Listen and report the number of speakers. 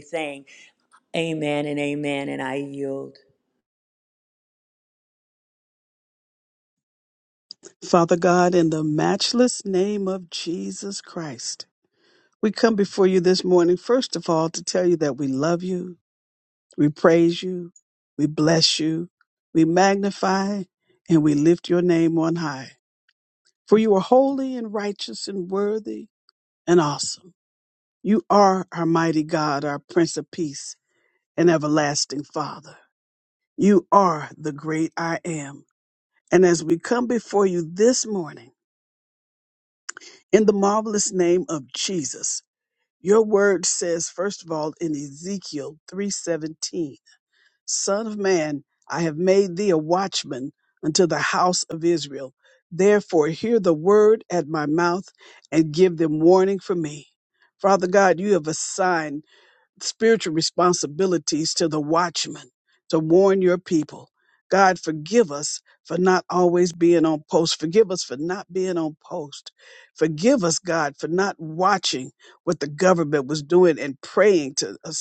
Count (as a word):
two